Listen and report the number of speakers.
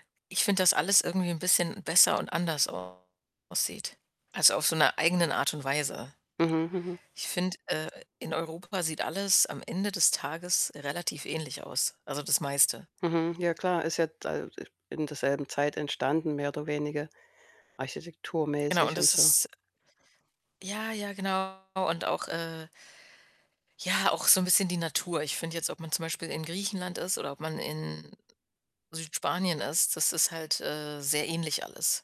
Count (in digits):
2